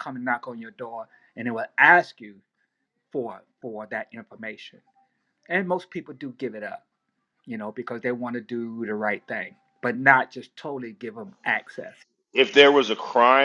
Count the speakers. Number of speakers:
2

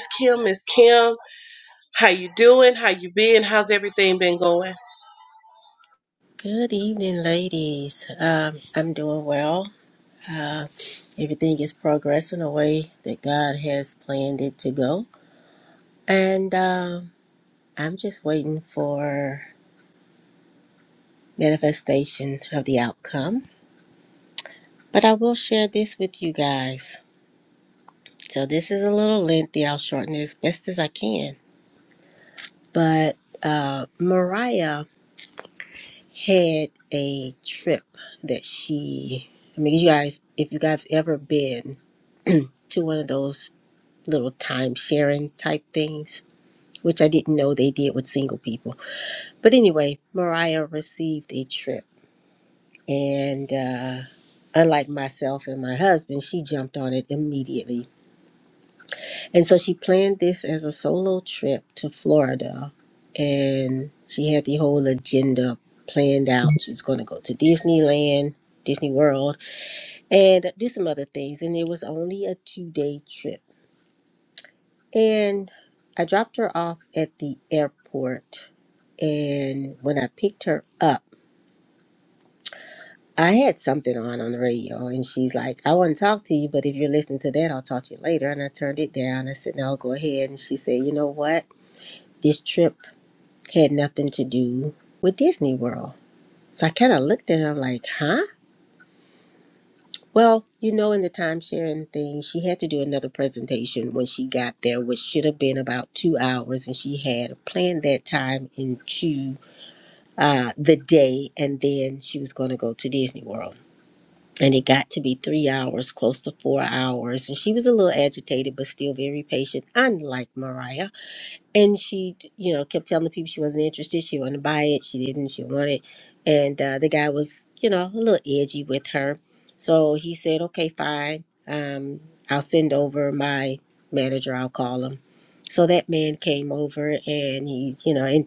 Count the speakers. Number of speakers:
2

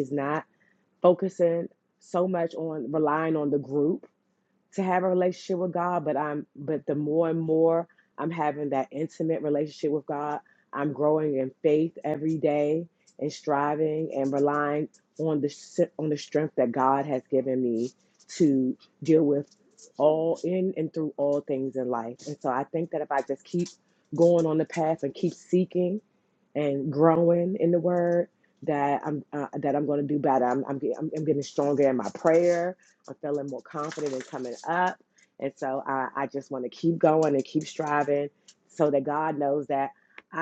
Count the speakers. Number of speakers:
1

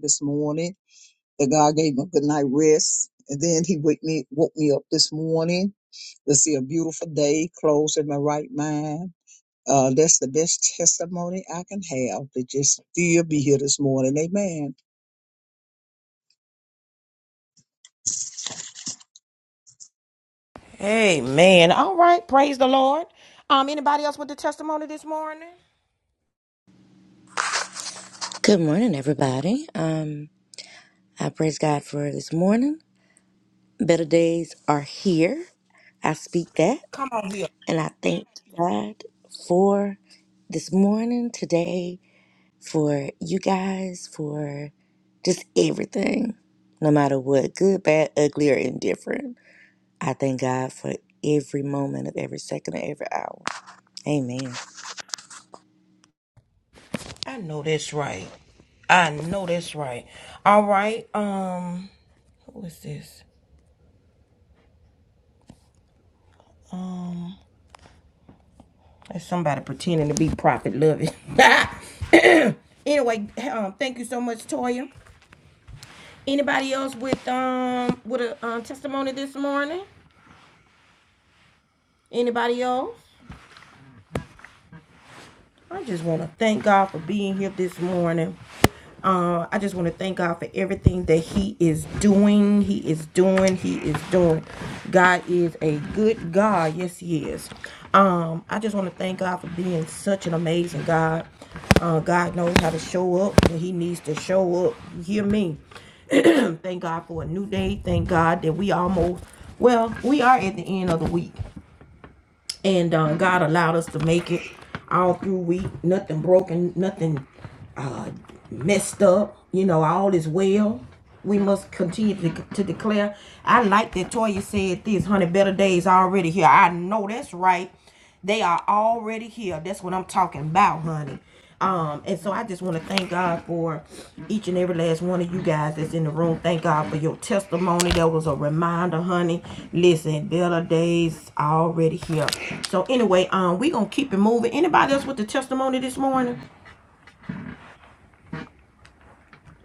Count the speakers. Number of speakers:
3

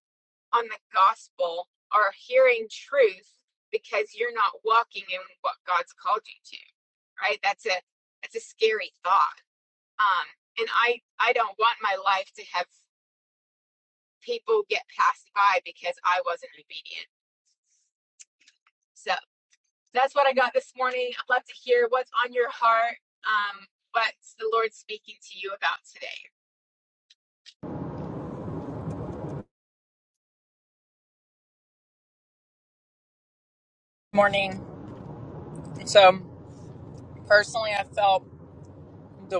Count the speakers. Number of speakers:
2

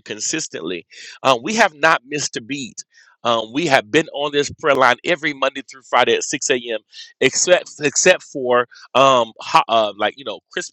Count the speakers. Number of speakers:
1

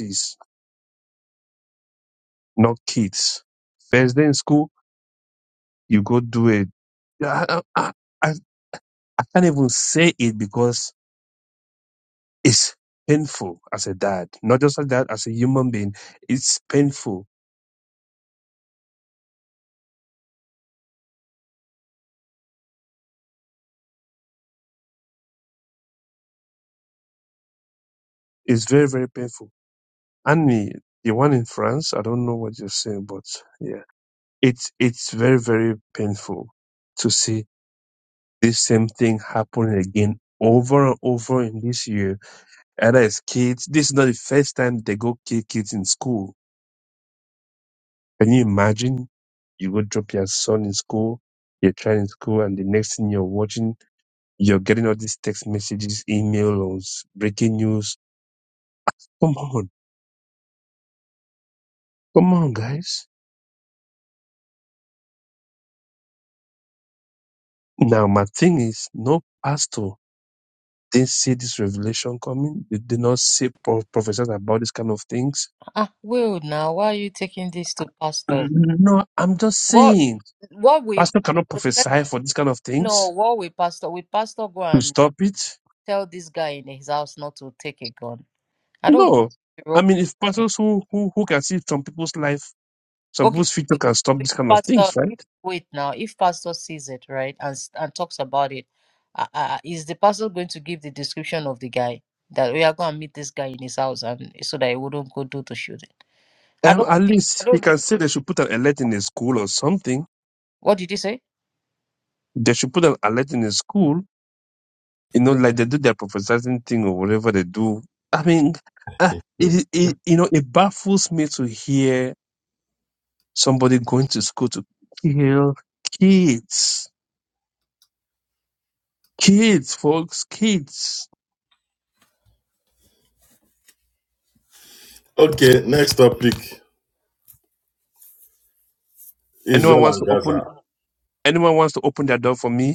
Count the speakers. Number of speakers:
3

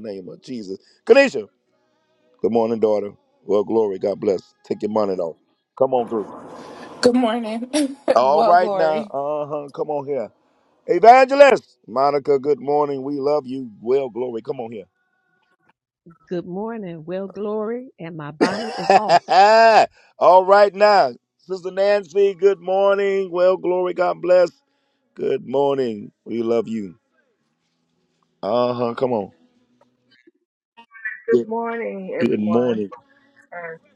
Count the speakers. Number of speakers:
4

